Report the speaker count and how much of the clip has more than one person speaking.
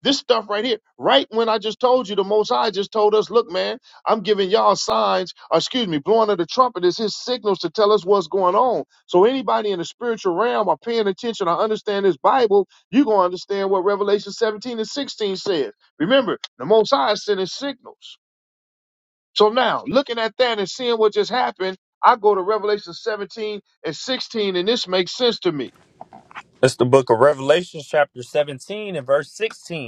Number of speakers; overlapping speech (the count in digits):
2, no overlap